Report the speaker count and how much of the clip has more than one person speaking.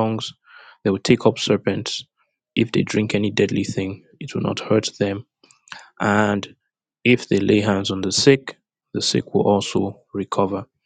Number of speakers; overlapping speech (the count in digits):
1, no overlap